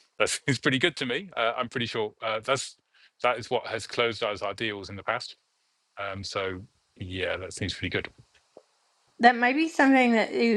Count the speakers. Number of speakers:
2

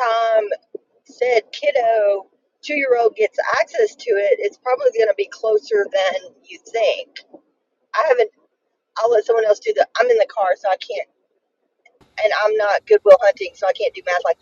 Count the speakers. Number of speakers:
1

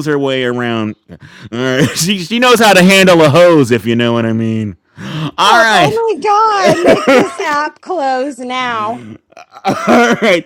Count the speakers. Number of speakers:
2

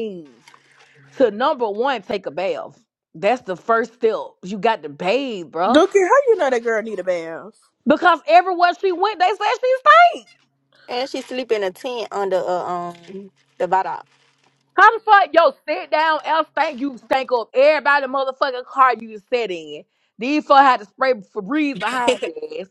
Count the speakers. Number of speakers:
3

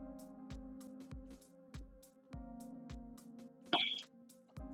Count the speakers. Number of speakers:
0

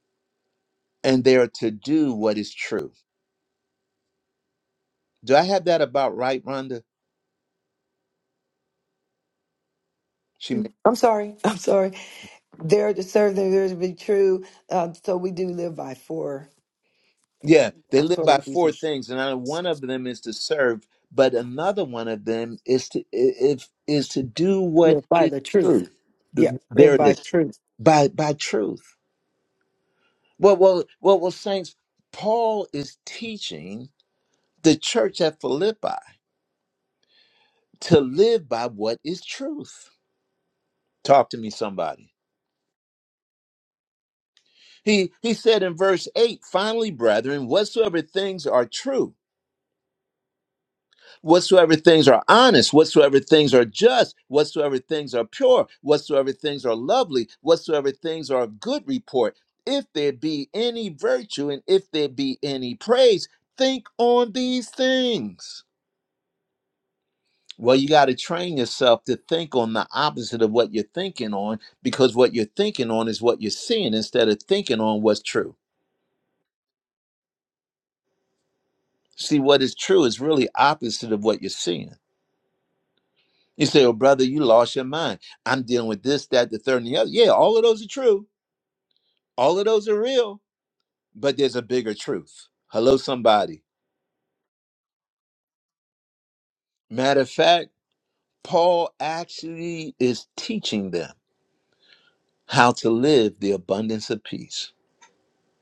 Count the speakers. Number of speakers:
2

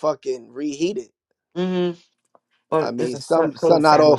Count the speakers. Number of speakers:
2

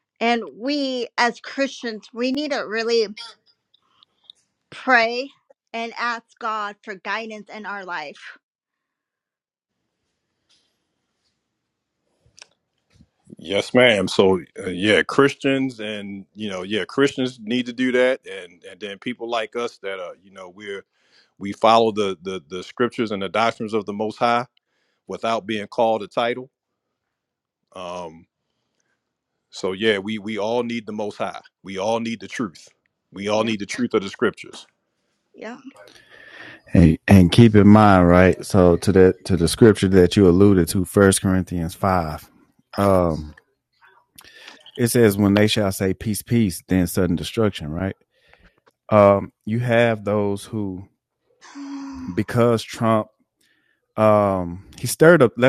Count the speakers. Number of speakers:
3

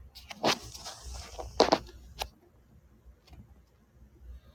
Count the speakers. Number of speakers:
0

